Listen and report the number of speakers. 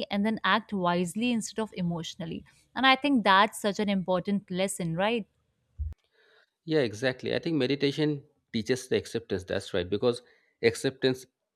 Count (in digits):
2